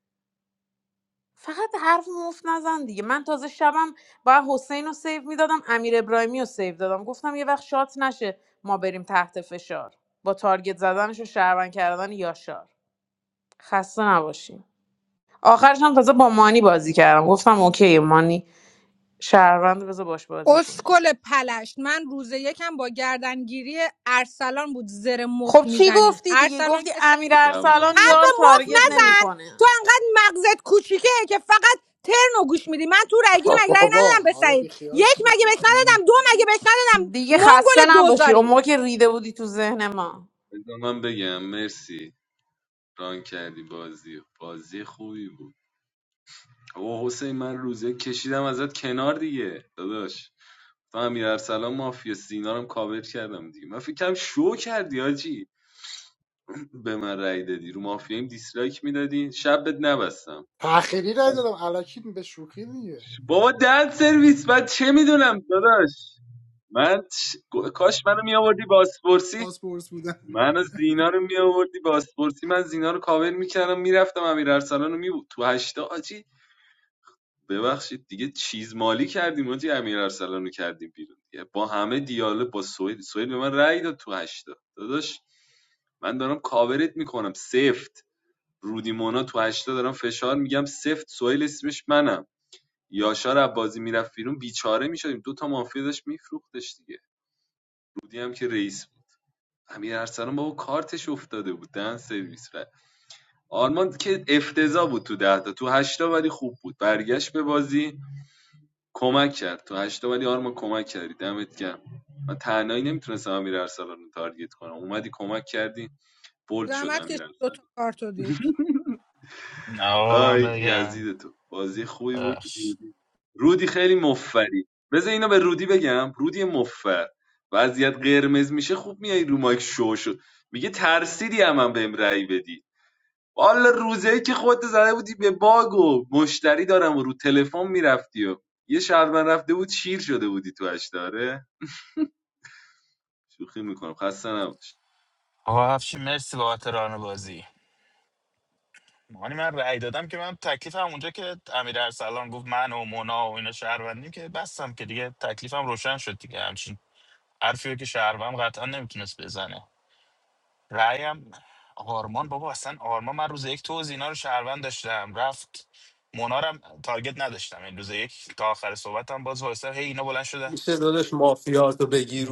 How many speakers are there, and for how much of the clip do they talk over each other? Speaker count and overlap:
6, about 6%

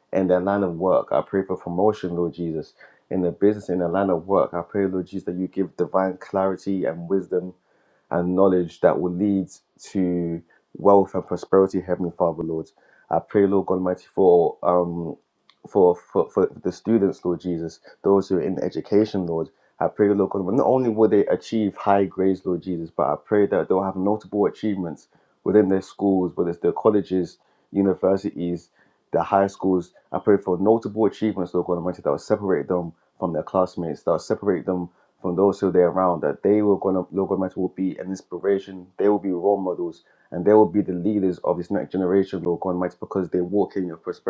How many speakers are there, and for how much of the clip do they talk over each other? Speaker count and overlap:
1, no overlap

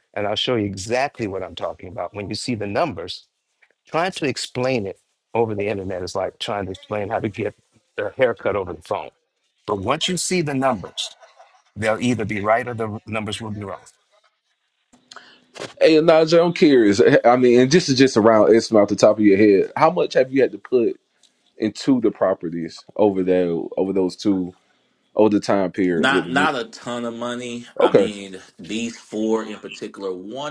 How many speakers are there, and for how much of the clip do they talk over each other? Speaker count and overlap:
3, about 3%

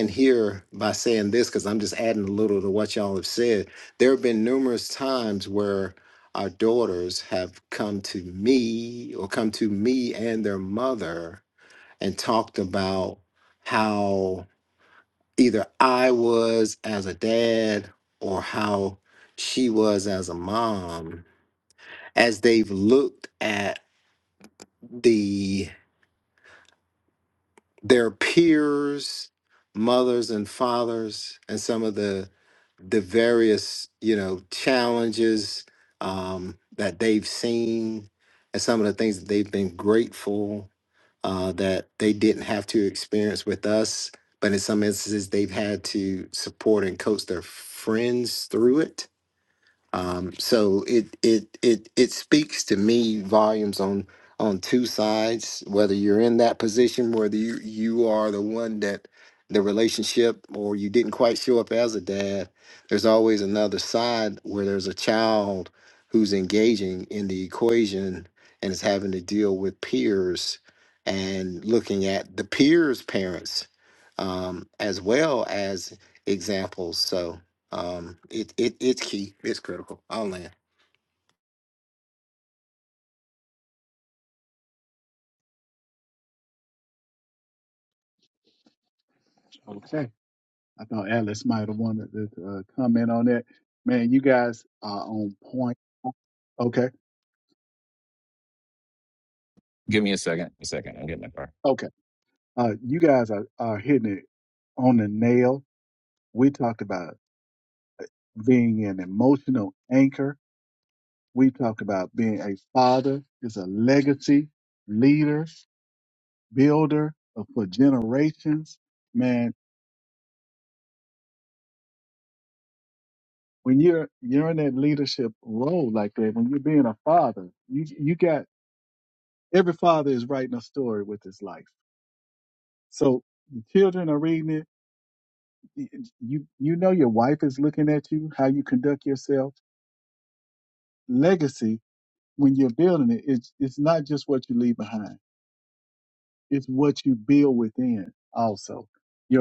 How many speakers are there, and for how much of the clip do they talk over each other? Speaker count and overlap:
3, no overlap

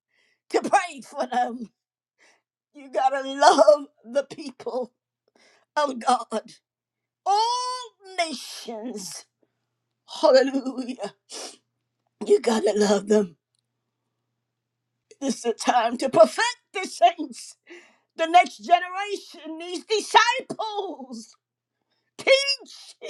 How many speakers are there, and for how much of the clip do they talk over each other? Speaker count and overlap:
1, no overlap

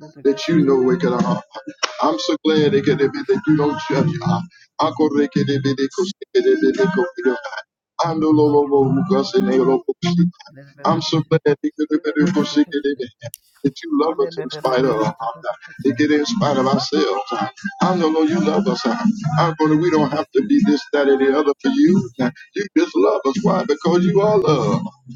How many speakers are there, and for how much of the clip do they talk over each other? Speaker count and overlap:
2, about 14%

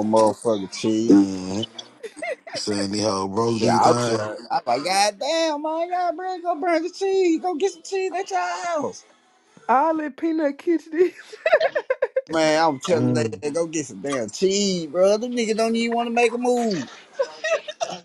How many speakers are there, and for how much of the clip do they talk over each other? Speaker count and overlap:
3, about 7%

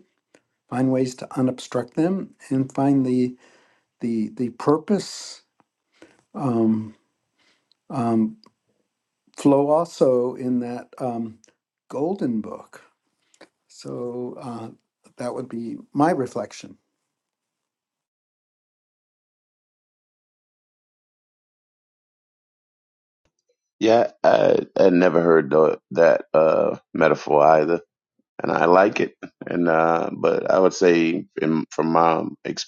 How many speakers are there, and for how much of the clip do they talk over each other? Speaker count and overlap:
2, no overlap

